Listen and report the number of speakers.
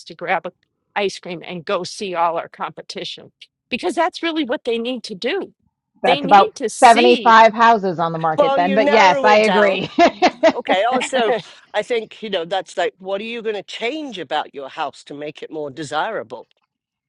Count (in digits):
3